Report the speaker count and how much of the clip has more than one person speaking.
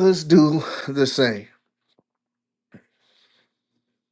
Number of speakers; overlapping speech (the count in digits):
1, no overlap